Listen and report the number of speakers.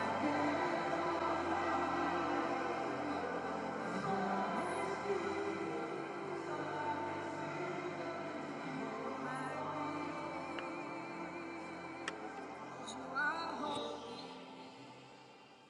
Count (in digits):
0